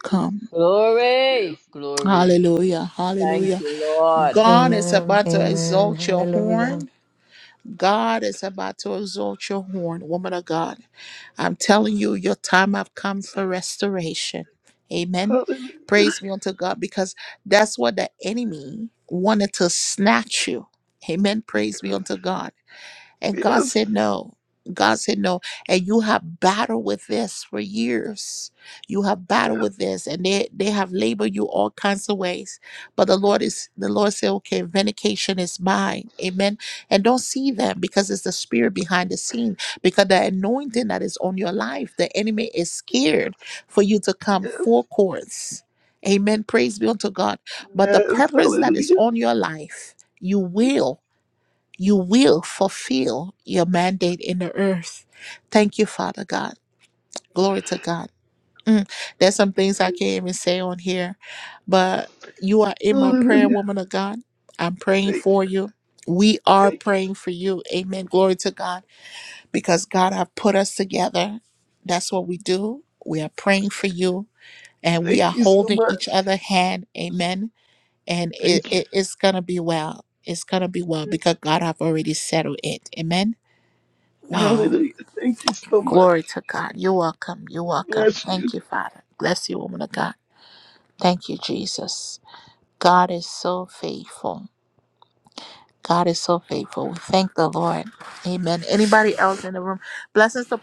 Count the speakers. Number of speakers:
3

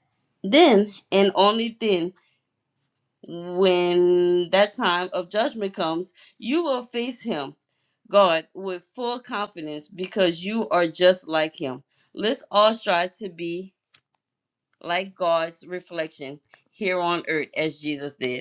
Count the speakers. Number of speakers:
1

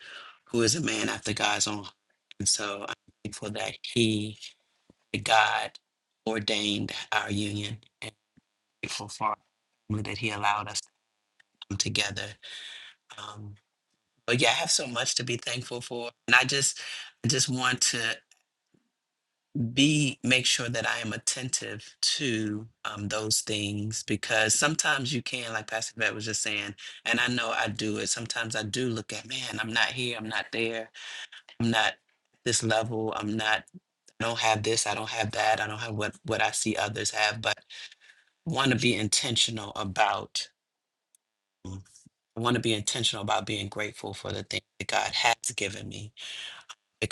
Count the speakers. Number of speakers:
1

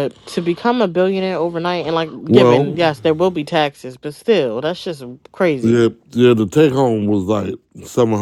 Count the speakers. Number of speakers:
2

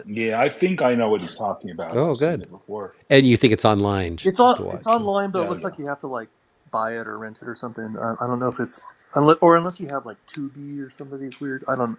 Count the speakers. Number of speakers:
3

